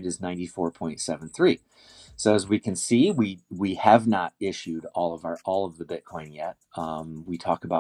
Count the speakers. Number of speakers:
one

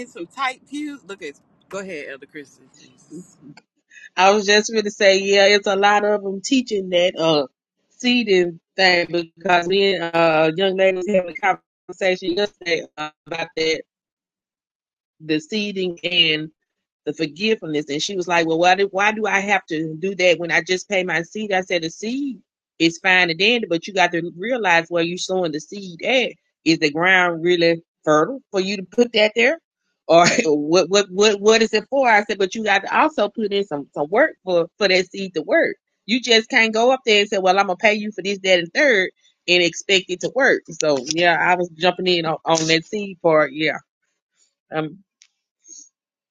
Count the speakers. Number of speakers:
two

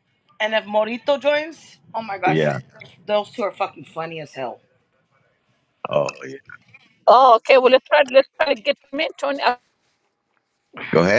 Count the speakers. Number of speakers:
three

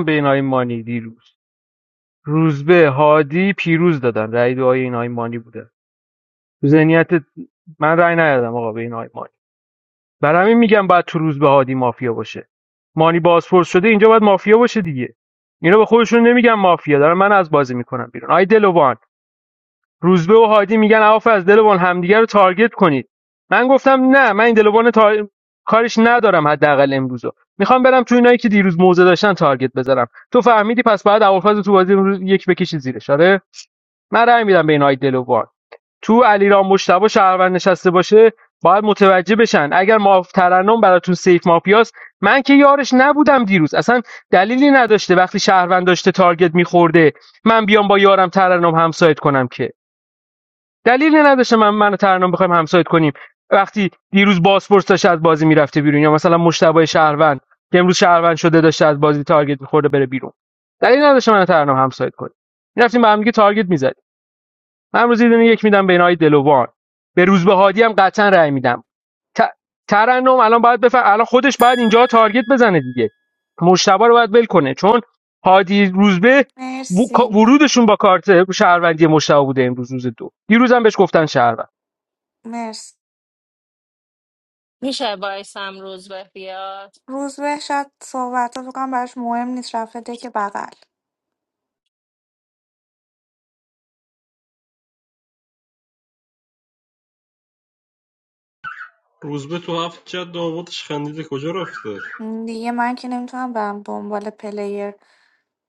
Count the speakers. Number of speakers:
four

